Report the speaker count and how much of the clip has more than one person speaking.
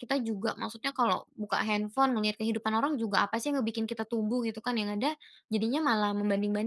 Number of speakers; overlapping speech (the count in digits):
1, no overlap